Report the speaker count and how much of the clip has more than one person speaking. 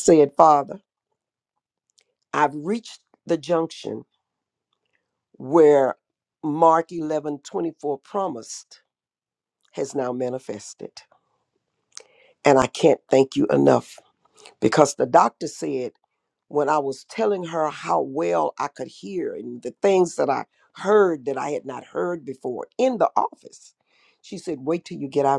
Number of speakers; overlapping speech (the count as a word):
one, no overlap